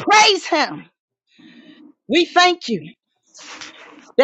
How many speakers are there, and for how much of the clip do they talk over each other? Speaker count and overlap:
1, no overlap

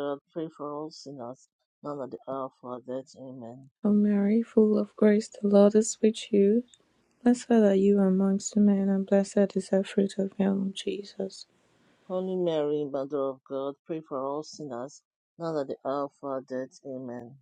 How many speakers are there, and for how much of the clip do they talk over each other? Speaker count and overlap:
2, no overlap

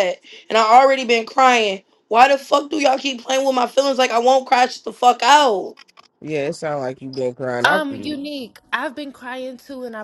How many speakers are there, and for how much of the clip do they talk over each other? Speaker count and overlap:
3, about 2%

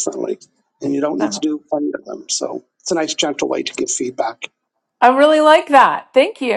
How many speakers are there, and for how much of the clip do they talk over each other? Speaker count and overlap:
2, about 2%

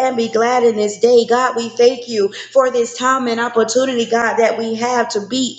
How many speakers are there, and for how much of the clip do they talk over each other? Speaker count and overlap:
1, no overlap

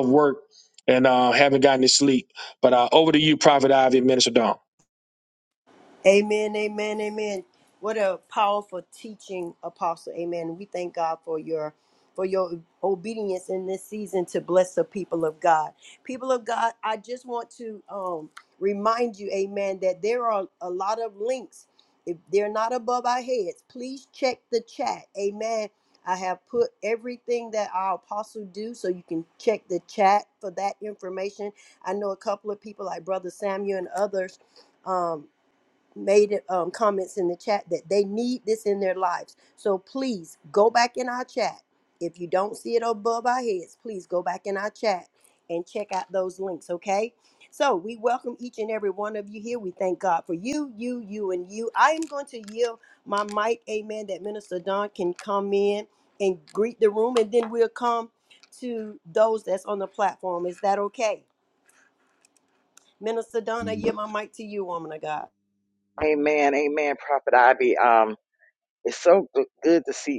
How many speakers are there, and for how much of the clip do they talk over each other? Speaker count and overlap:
3, no overlap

